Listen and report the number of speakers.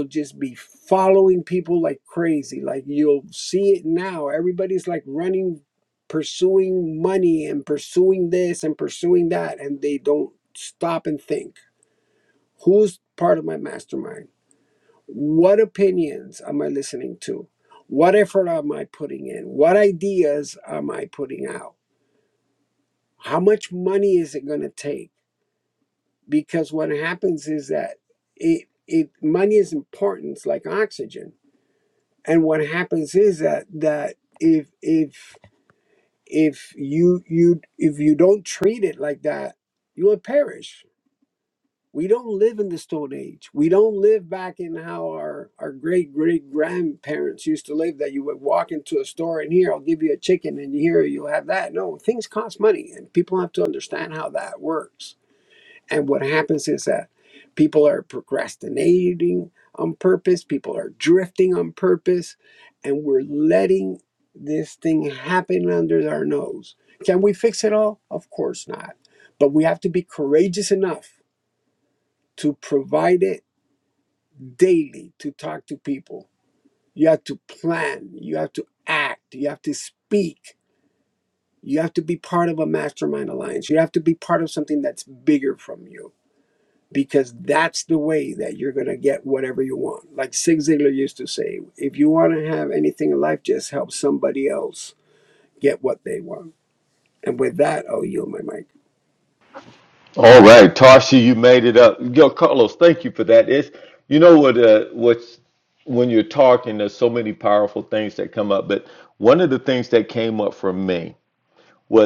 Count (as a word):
two